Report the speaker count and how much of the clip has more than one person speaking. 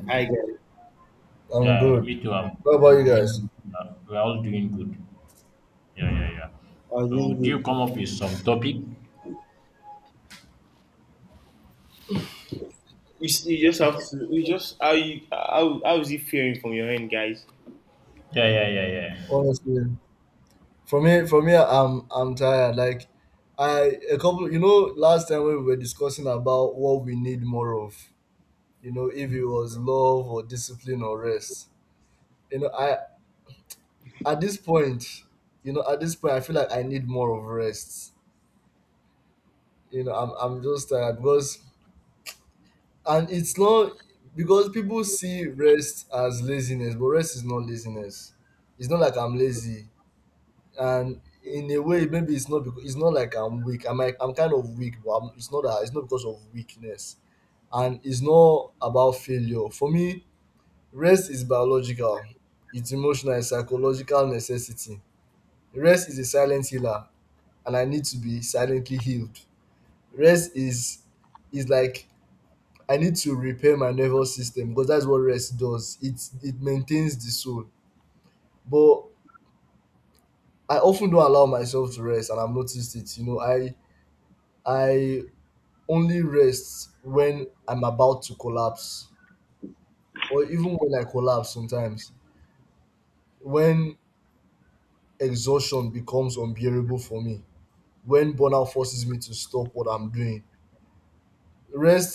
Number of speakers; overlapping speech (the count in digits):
3, about 2%